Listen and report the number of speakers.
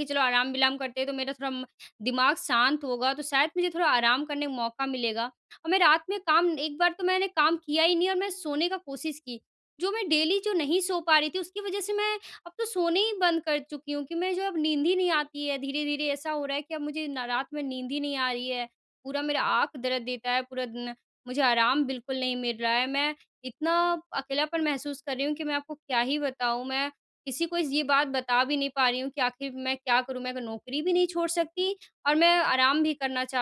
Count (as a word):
one